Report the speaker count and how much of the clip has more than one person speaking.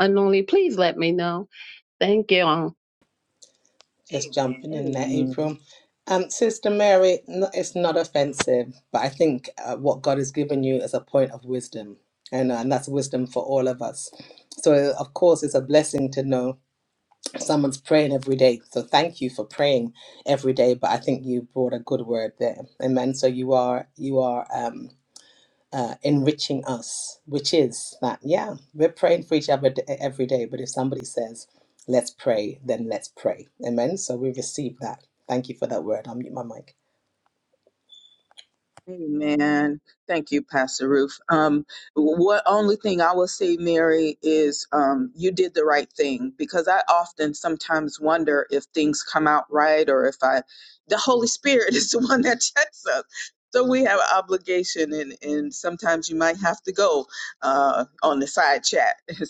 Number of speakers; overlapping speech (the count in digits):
3, about 1%